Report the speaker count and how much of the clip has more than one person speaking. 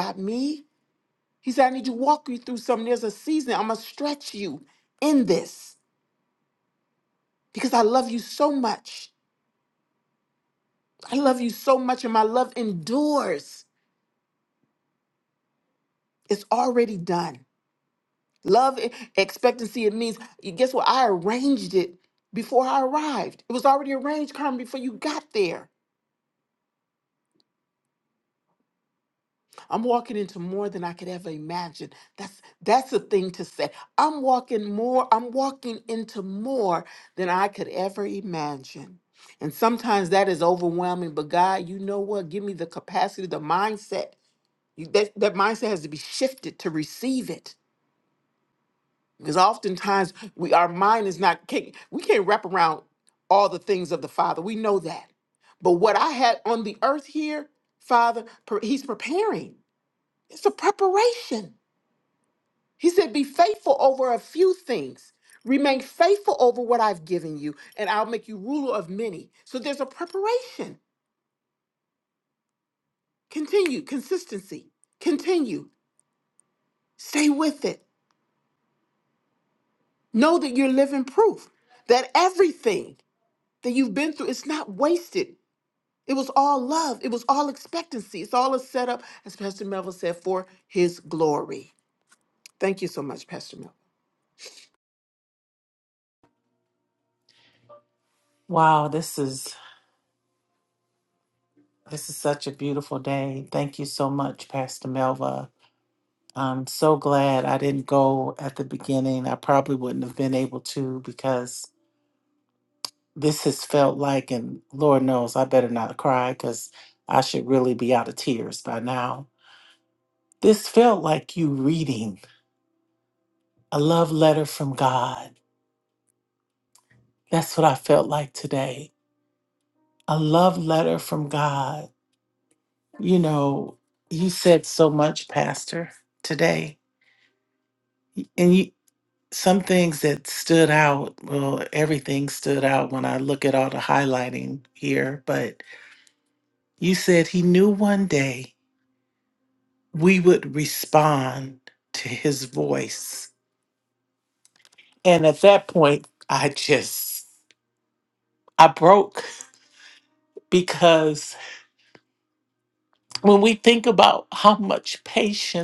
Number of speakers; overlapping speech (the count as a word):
two, no overlap